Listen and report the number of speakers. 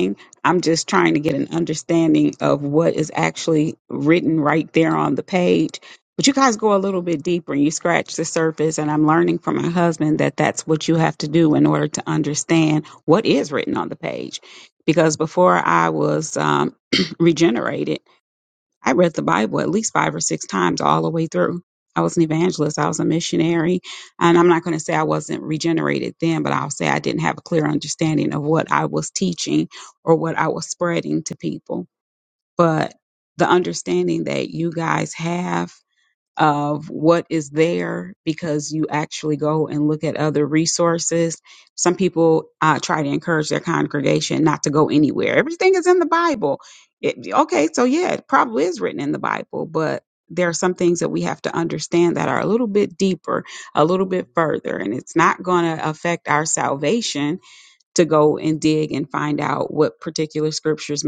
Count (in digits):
1